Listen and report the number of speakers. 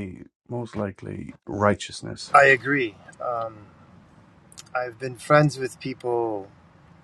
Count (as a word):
two